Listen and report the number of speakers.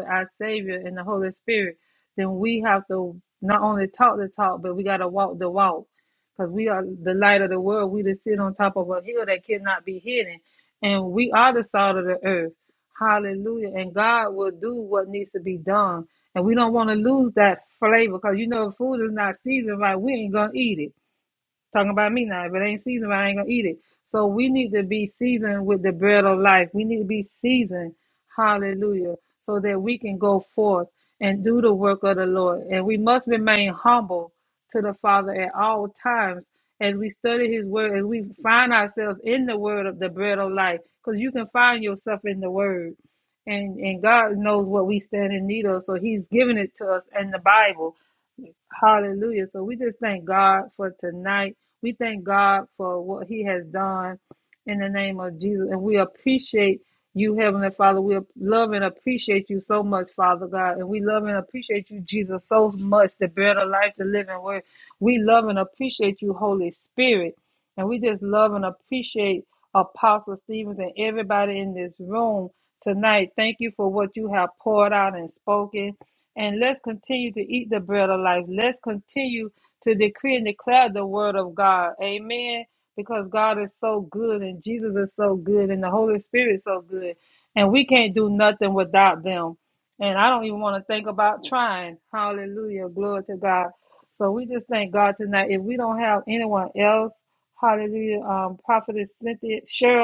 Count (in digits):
1